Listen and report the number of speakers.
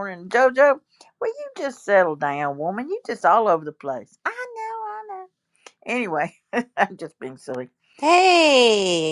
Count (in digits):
2